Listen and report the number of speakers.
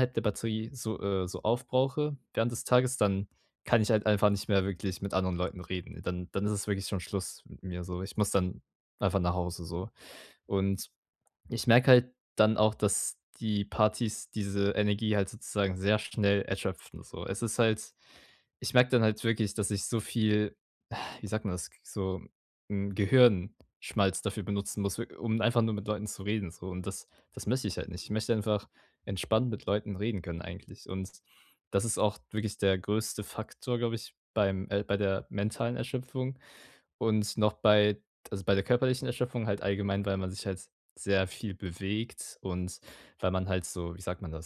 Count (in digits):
1